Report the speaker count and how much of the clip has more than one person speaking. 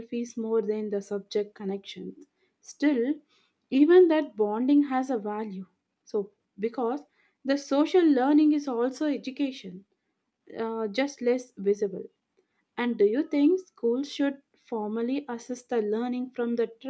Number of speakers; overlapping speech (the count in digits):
1, no overlap